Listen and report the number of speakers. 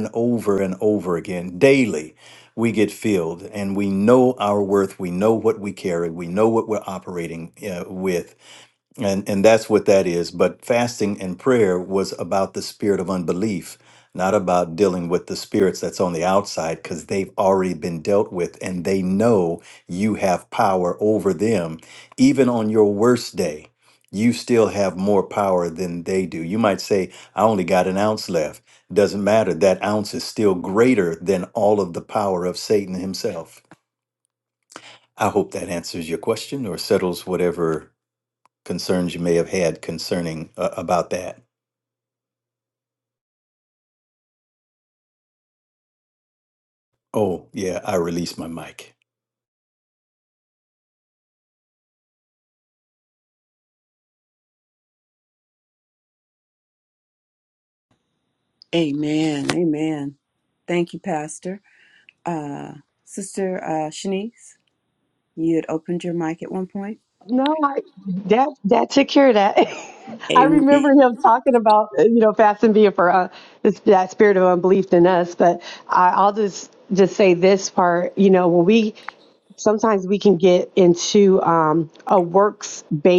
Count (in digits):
3